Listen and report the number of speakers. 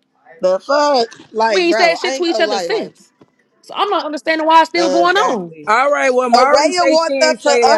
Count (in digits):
3